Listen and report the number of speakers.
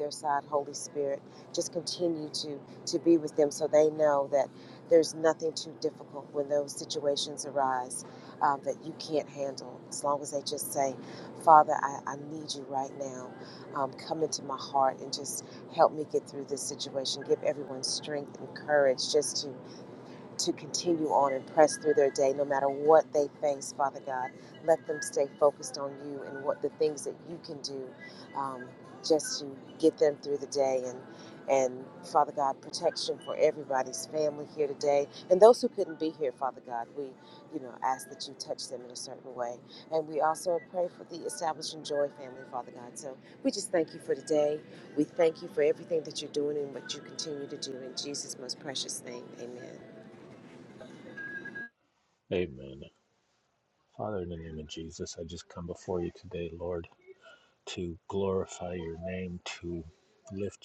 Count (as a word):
two